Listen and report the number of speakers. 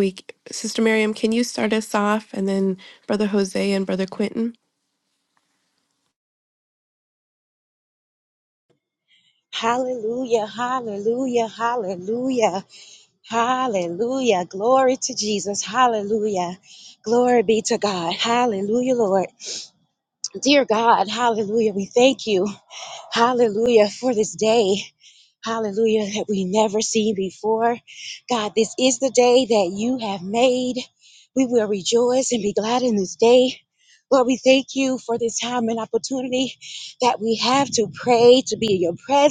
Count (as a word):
two